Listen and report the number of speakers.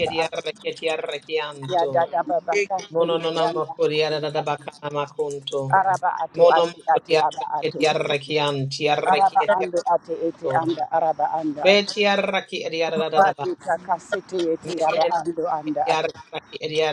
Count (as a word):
two